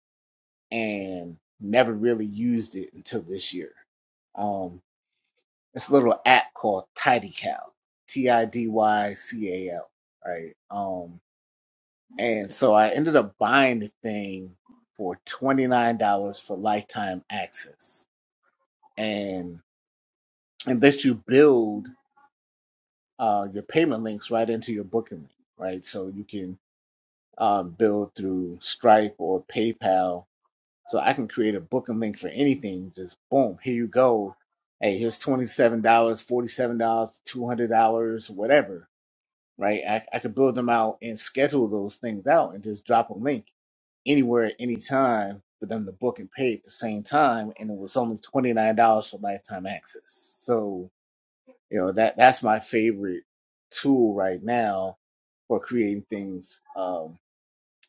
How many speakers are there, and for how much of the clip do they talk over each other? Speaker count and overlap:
one, no overlap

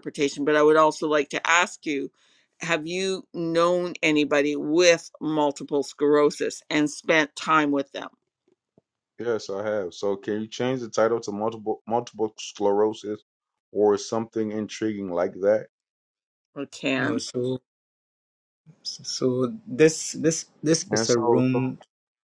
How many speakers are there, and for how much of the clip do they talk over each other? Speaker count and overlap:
three, about 4%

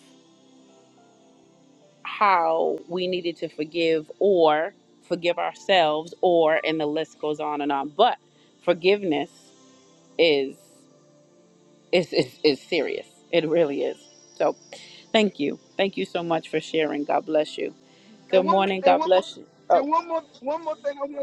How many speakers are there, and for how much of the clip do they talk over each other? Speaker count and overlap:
two, about 5%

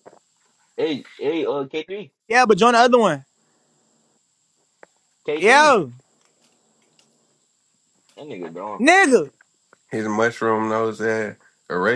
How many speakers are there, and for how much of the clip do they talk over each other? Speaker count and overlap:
three, about 3%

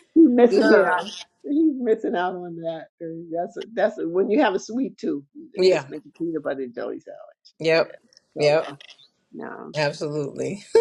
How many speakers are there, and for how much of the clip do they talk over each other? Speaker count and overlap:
two, about 11%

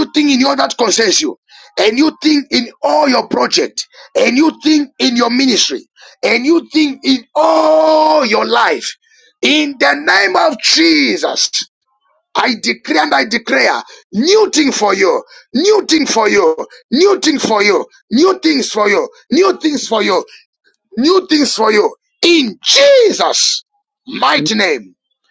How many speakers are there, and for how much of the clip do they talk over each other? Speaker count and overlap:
one, no overlap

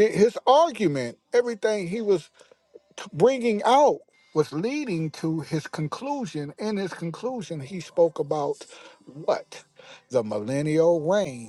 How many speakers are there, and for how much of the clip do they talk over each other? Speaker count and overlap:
one, no overlap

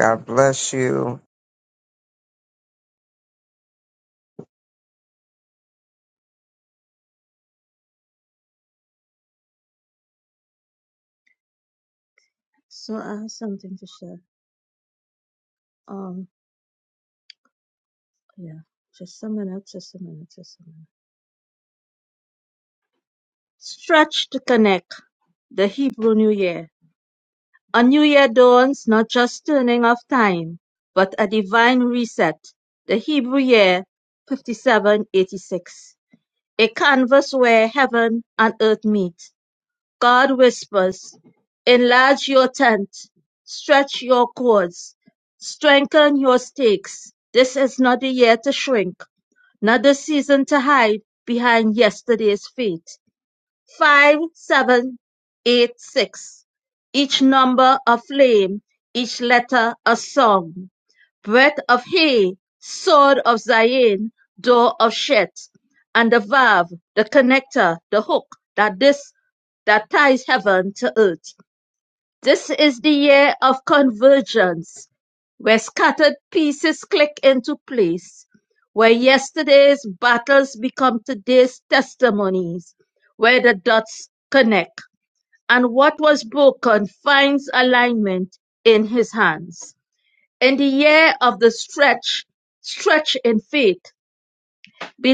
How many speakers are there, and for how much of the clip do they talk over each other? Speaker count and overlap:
two, no overlap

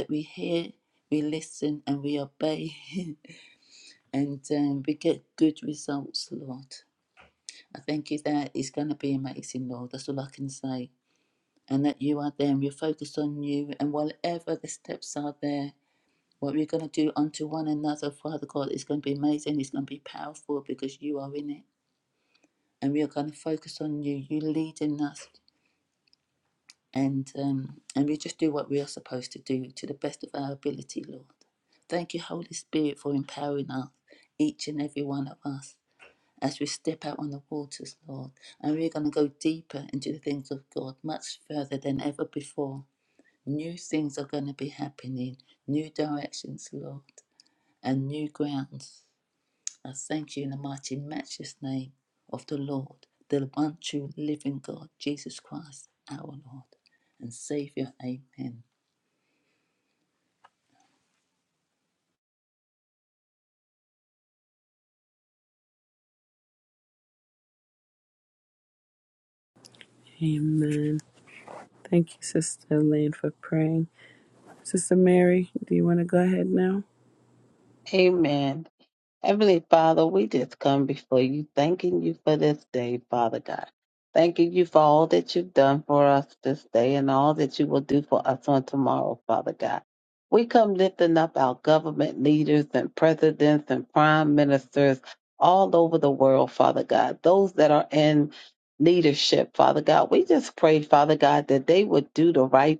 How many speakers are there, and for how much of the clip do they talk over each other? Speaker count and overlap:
three, no overlap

